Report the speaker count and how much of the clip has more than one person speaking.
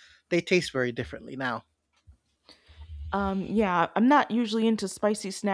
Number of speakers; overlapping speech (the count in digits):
2, no overlap